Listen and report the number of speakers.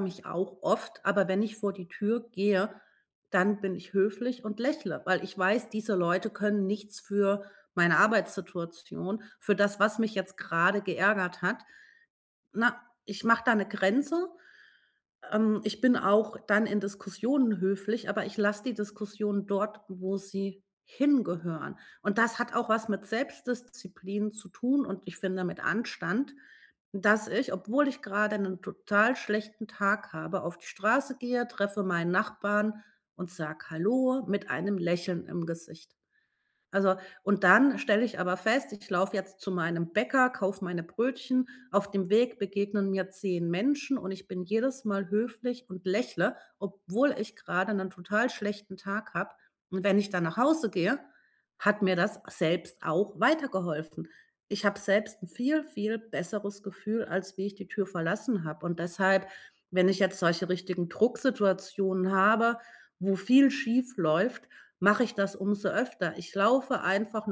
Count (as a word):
one